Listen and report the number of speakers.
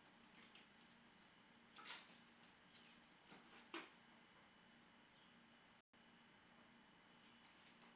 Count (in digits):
0